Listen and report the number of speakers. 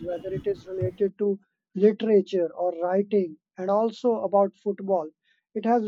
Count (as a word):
one